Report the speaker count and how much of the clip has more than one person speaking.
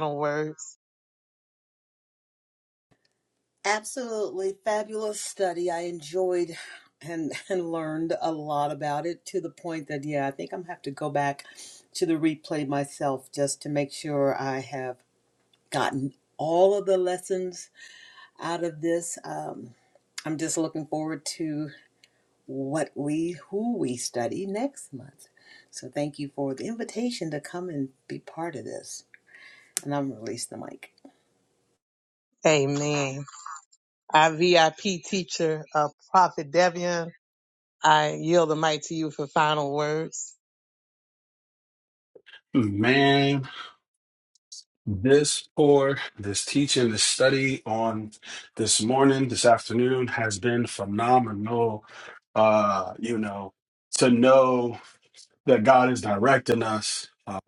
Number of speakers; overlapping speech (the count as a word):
three, no overlap